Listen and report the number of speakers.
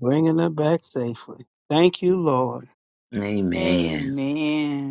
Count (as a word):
three